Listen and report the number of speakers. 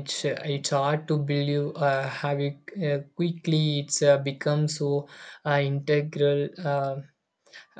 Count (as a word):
one